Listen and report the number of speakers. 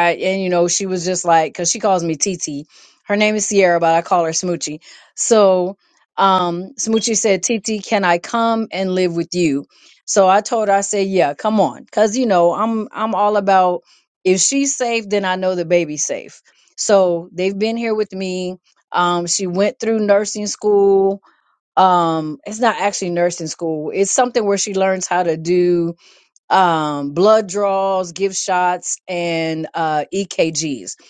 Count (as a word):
one